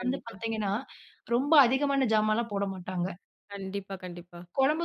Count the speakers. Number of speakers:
2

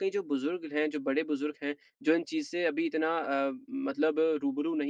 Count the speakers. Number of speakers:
1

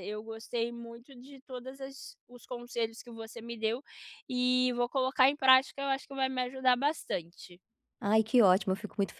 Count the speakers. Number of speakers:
2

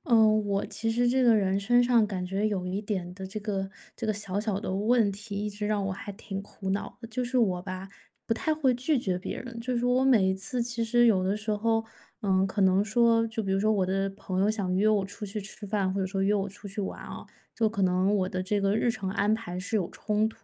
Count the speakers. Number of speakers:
1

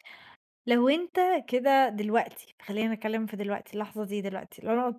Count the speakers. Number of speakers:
1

